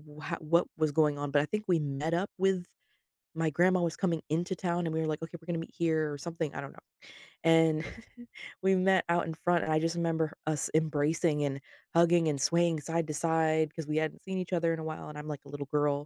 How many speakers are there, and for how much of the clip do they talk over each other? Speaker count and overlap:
1, no overlap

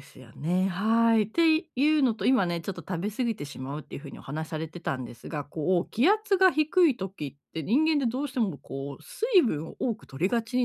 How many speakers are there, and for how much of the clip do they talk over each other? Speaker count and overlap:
1, no overlap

